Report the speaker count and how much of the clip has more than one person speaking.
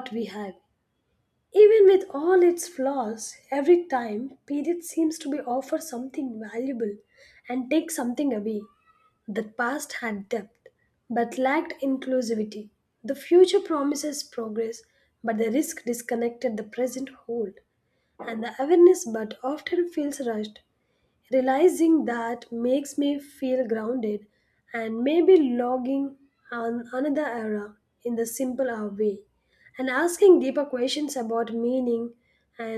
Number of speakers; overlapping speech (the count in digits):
1, no overlap